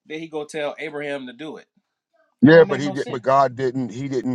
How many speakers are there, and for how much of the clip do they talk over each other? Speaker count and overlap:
2, about 17%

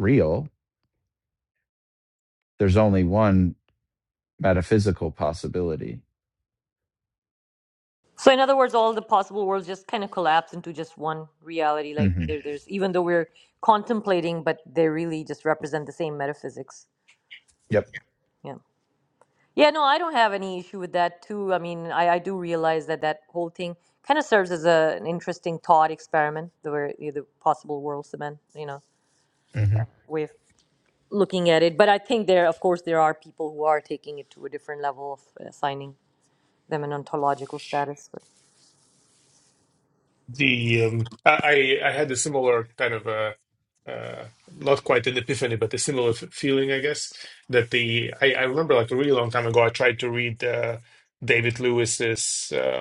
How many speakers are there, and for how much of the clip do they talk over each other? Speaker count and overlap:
3, about 1%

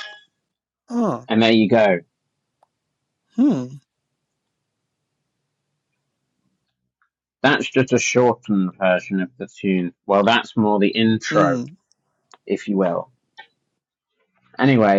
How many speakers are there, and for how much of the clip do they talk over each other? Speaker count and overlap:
2, about 2%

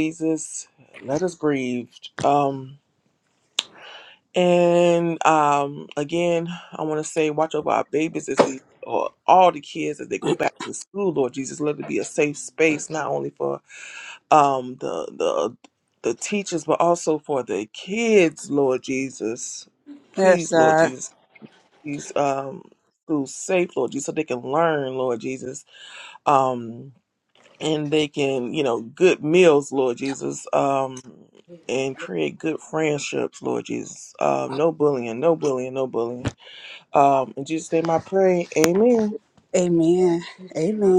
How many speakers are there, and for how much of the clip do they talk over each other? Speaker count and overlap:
2, about 2%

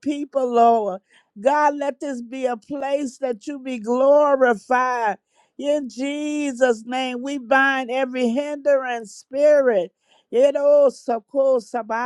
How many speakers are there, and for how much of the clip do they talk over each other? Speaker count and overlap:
1, no overlap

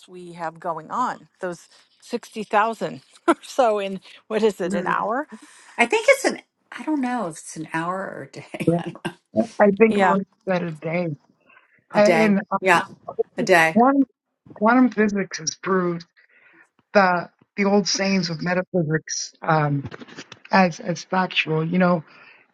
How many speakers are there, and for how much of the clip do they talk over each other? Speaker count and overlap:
3, about 7%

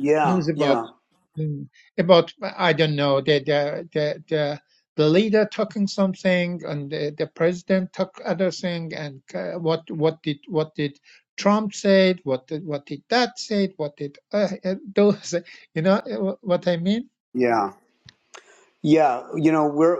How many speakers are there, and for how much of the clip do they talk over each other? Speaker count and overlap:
2, about 3%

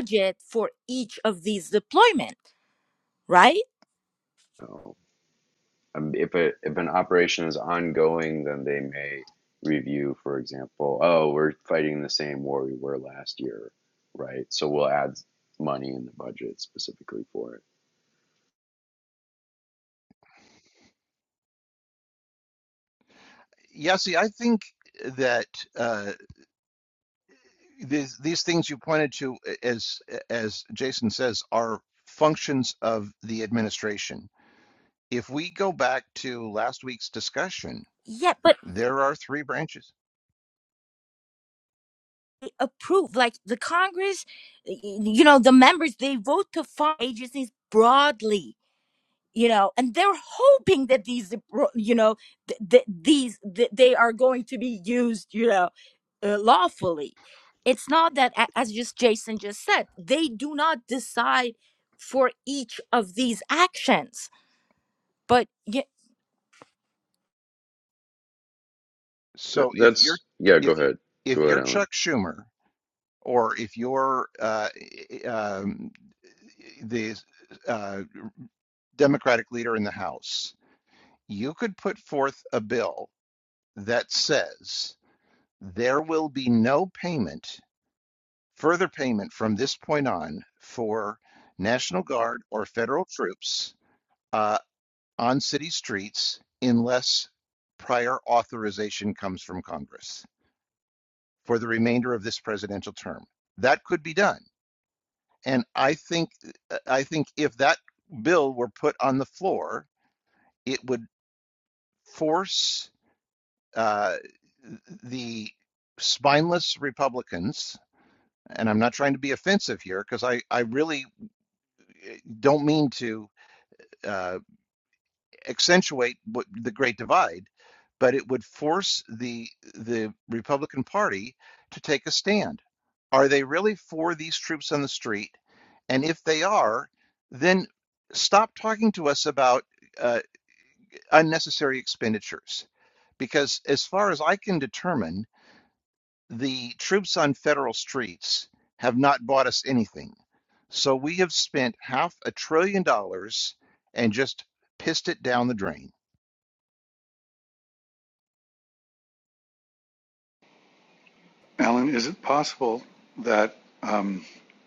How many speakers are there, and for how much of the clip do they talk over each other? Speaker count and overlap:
4, about 1%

